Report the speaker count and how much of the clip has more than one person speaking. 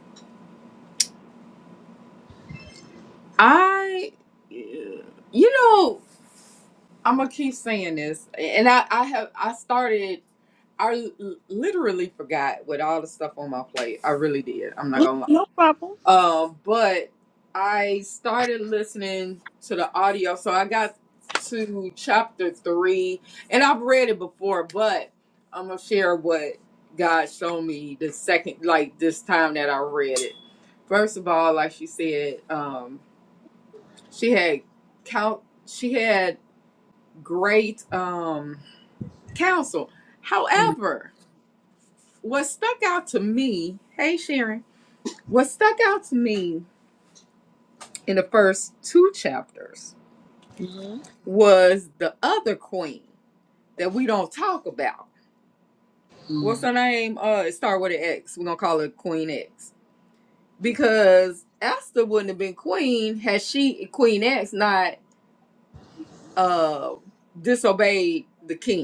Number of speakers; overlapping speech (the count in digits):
2, under 1%